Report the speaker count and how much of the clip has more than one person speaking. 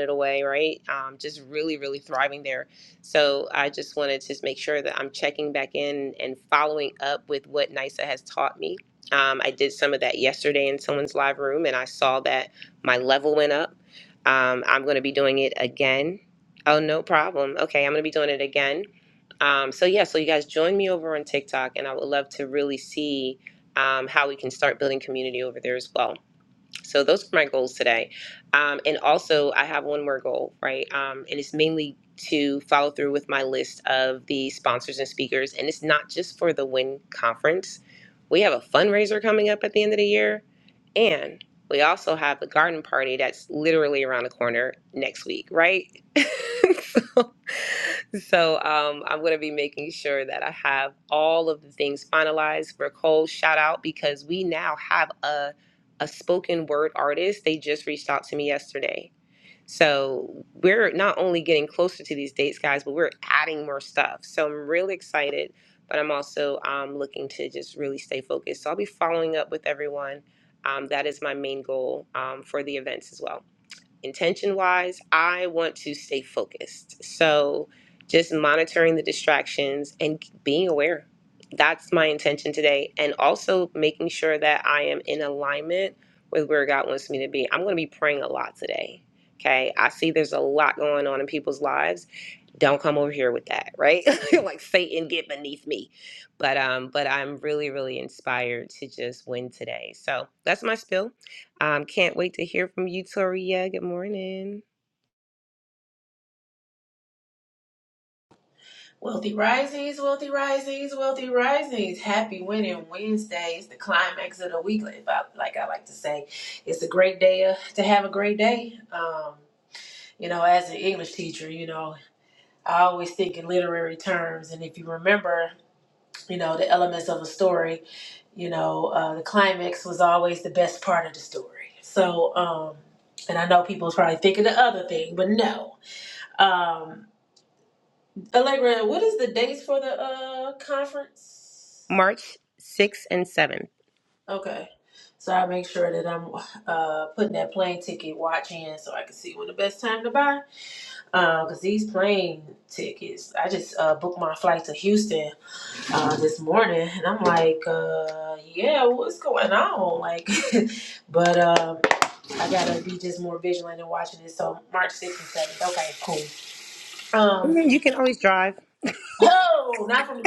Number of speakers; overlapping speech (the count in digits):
2, under 1%